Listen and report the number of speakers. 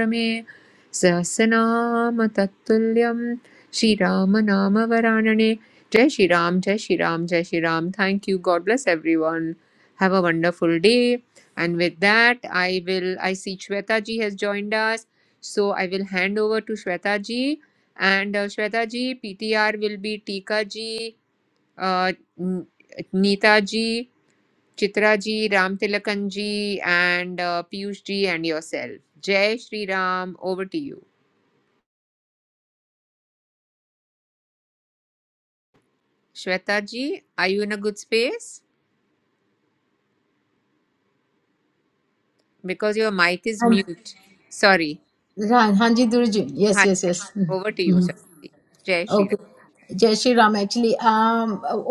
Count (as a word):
two